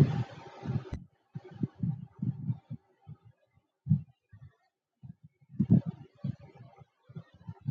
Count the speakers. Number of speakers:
0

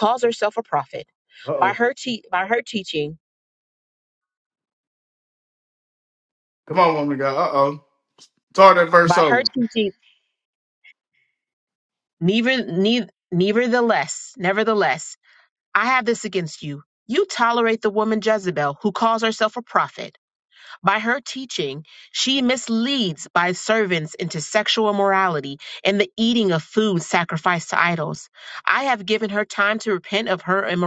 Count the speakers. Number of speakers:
2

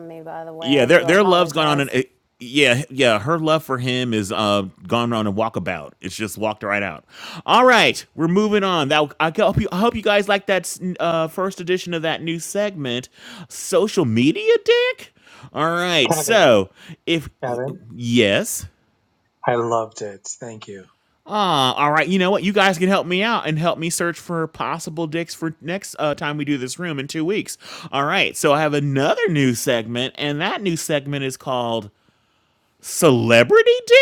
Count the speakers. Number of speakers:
3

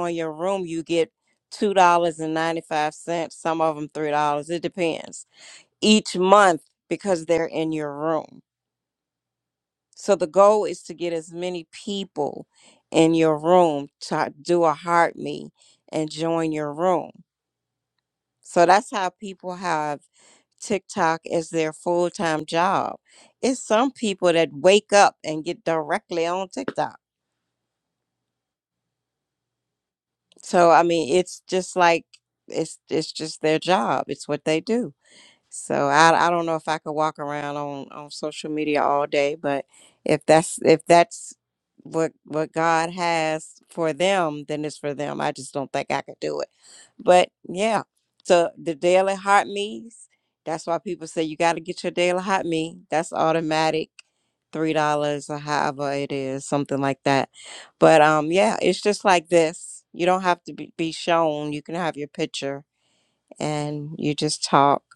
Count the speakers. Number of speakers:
1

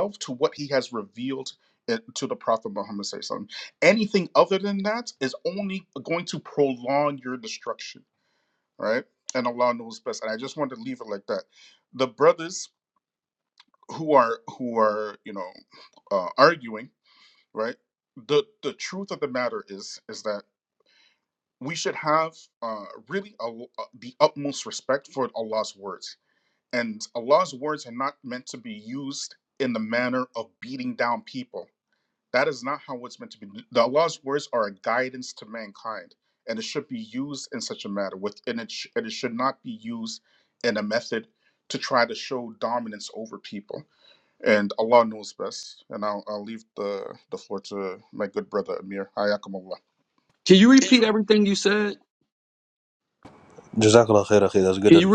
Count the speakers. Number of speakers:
3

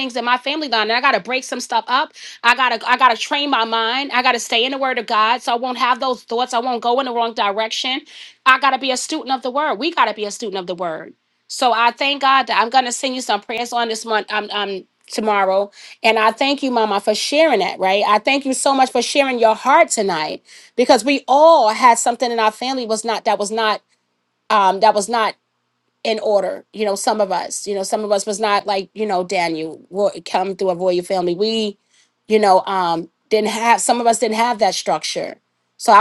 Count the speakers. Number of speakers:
1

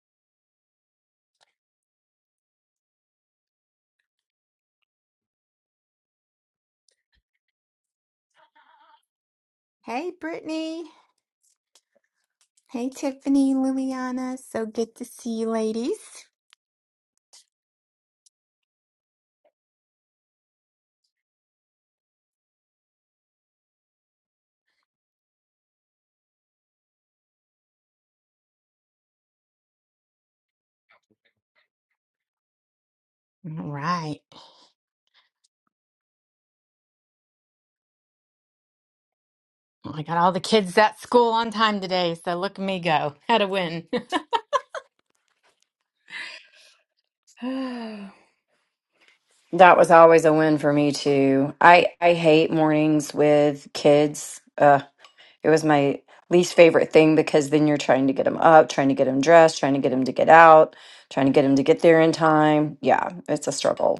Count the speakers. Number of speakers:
2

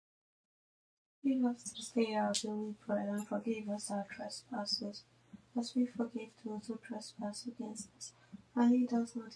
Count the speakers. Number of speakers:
1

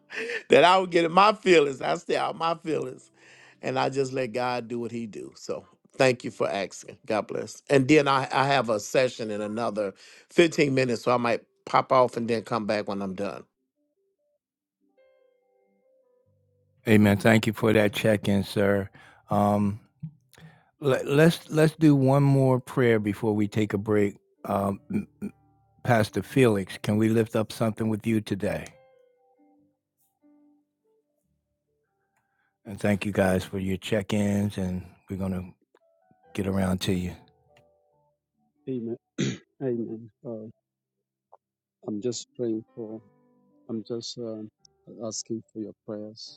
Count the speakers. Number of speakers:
3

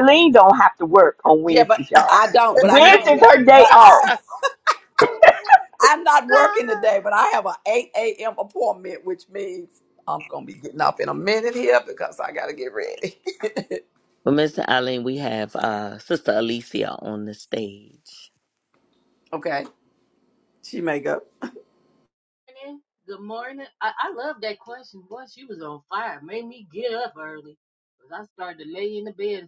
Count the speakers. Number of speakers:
4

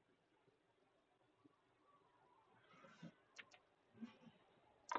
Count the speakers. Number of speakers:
0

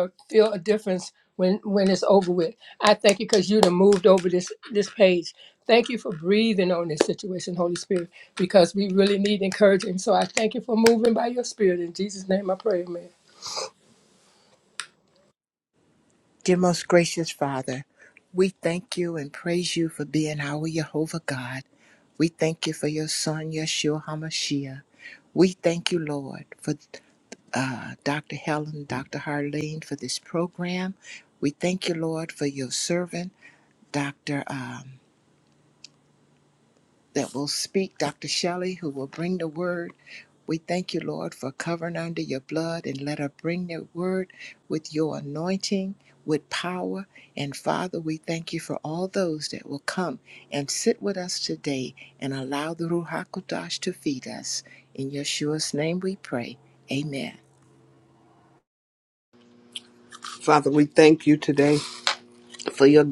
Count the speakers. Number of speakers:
3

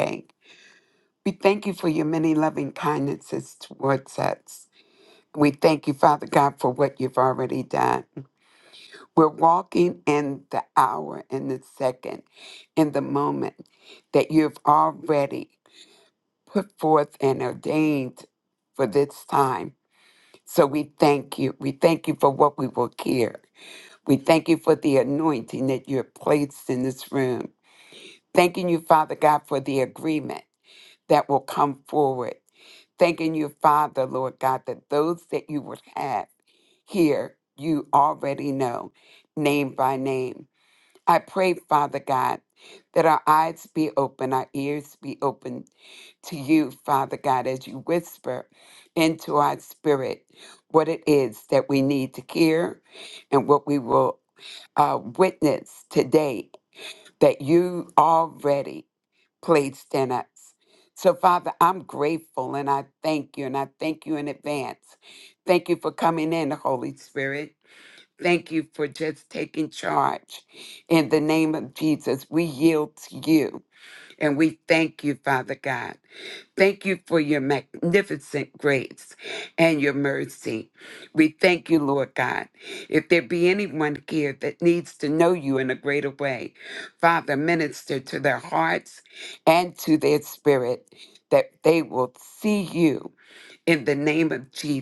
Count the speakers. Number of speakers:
1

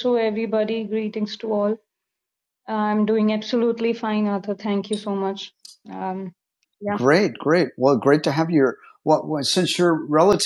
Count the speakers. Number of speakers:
2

